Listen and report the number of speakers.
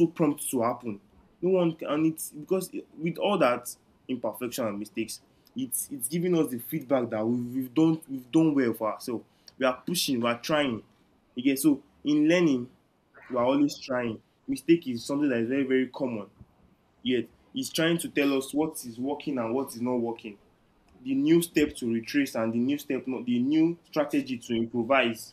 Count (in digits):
1